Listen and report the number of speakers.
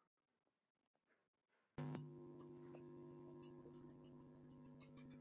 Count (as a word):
zero